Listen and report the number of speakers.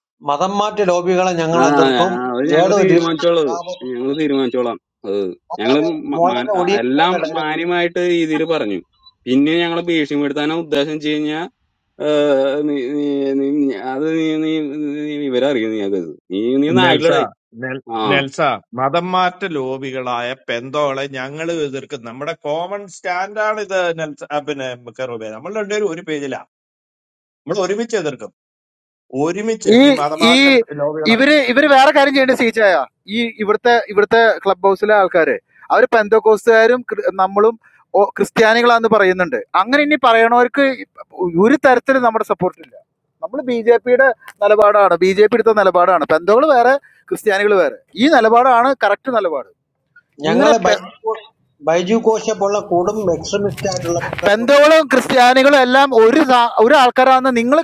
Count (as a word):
four